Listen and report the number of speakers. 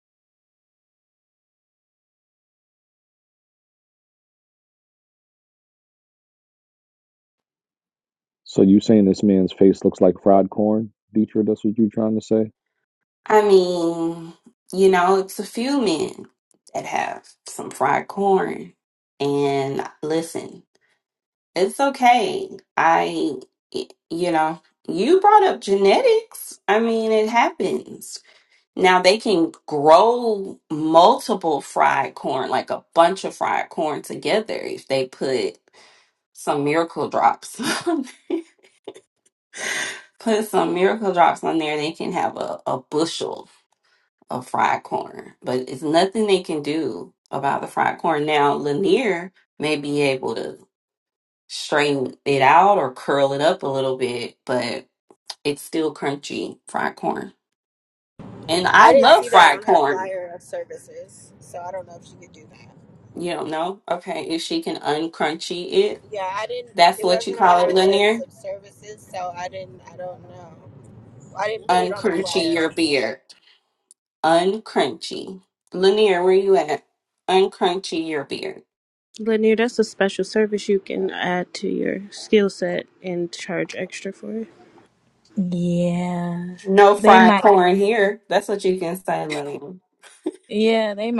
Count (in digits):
5